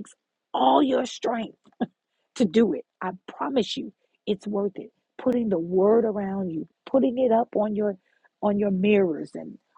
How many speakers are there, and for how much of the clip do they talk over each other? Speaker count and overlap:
one, no overlap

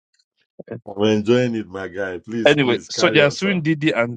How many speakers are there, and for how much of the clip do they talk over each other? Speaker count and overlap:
two, about 28%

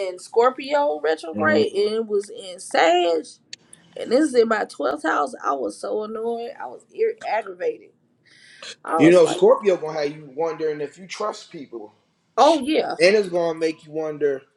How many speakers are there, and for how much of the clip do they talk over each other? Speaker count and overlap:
two, about 5%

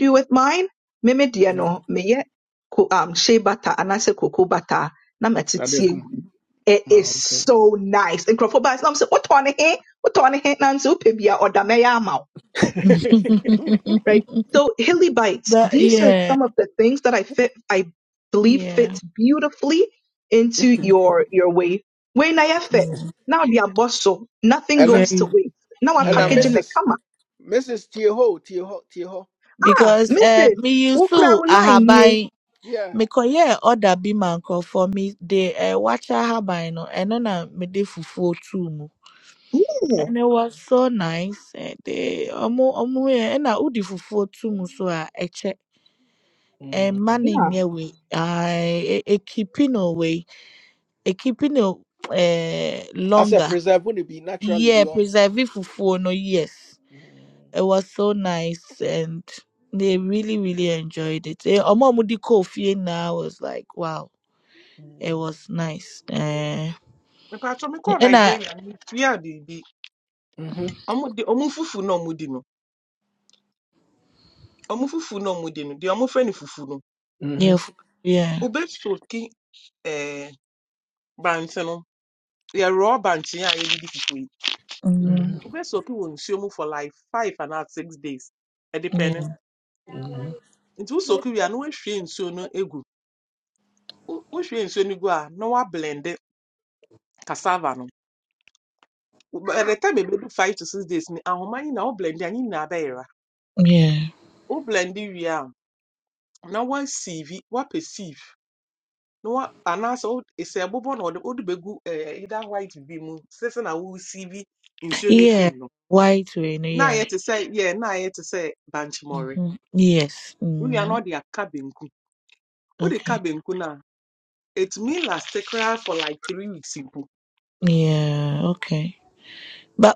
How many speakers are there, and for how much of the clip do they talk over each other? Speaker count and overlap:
four, about 8%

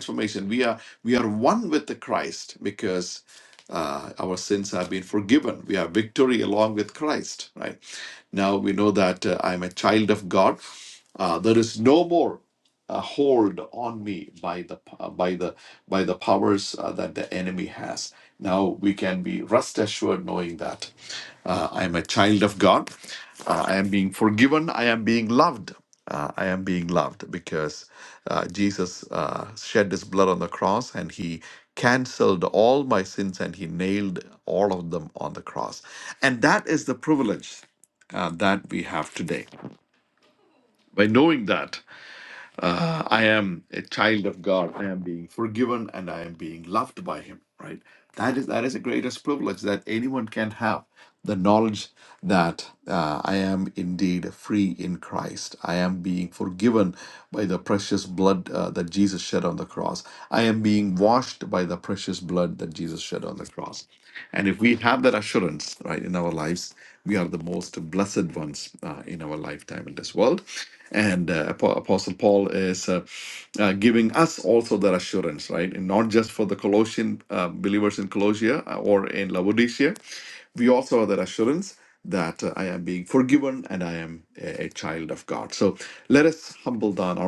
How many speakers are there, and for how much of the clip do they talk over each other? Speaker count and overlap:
one, no overlap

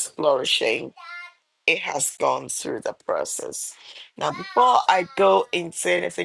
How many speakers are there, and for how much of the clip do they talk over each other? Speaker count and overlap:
one, no overlap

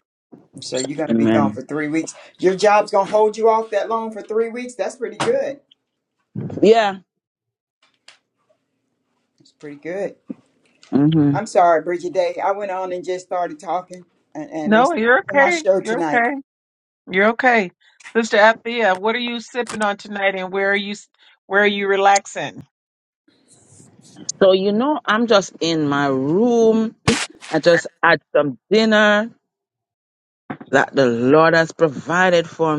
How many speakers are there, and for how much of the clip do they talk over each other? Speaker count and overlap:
three, about 5%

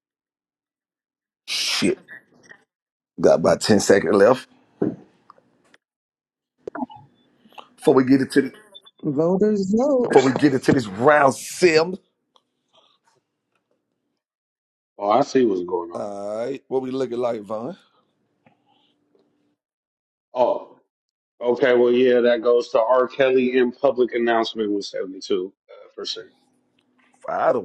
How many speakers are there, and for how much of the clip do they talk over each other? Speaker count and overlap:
three, about 1%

